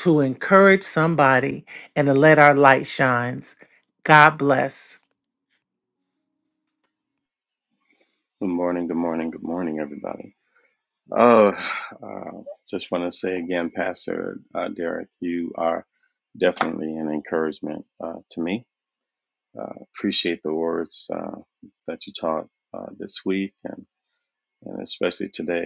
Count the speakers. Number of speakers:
2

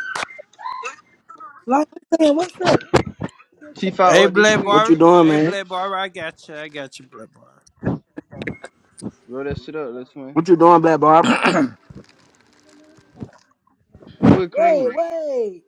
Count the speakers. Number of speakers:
4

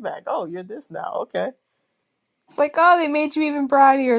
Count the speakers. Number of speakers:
2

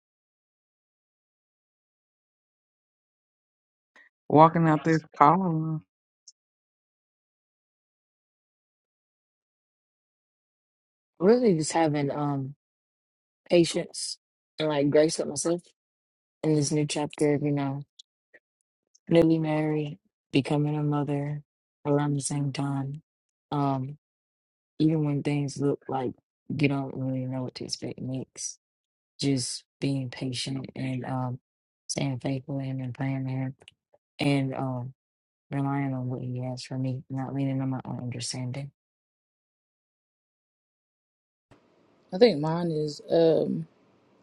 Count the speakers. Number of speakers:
3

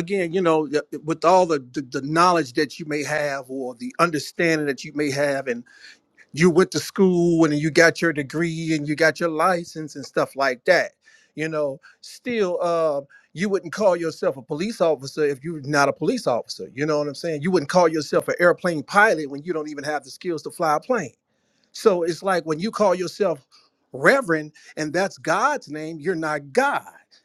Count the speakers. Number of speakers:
1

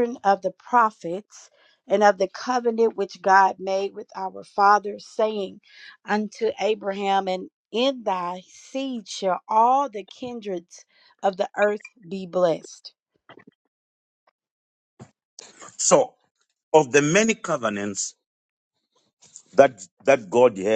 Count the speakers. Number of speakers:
2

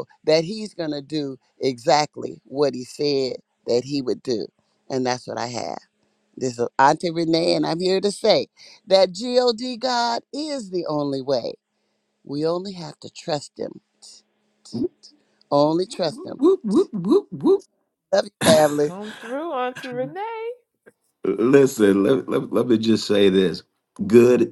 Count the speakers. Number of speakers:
3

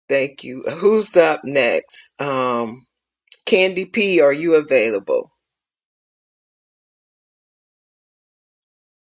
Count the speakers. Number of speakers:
1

